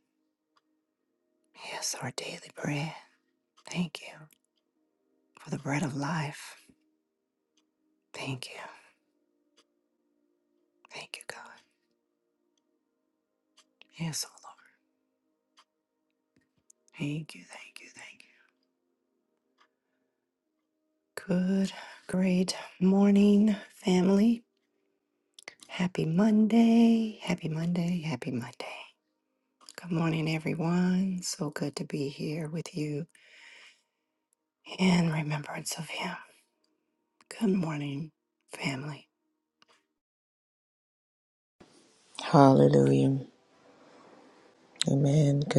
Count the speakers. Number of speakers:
2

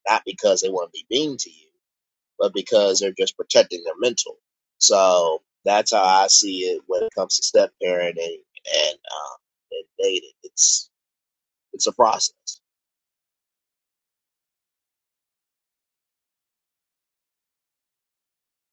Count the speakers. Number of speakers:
1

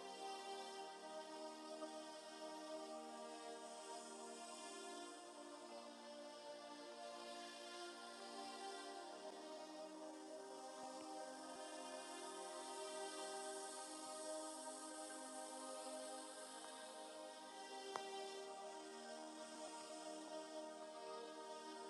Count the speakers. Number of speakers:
0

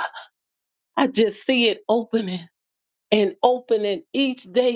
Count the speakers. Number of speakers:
1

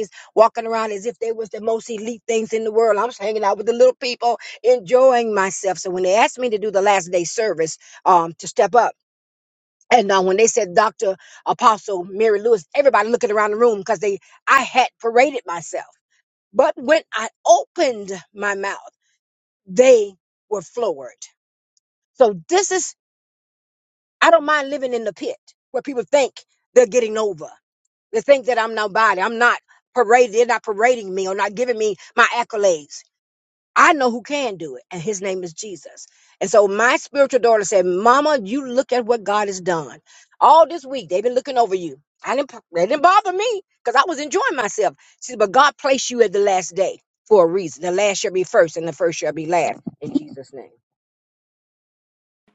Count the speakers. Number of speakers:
1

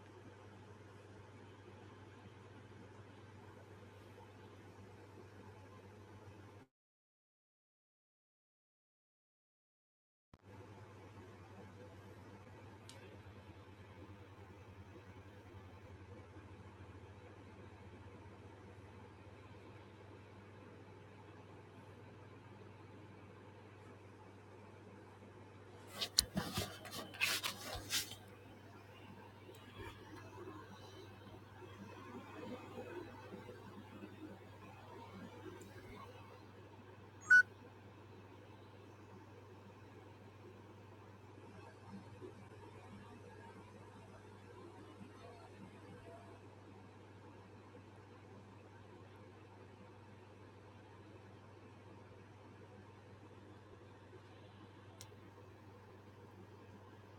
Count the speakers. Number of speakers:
0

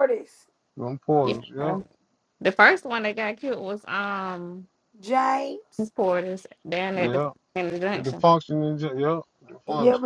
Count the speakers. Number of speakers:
3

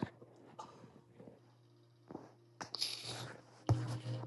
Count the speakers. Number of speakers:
0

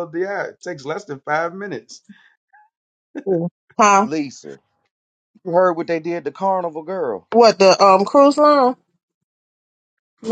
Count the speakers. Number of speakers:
3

